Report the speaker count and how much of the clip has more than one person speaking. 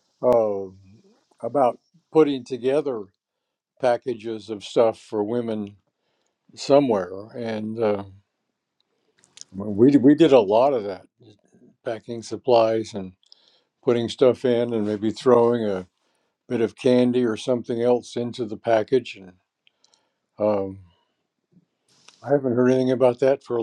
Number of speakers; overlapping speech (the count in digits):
1, no overlap